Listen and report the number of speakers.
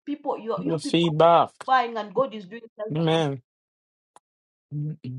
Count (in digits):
2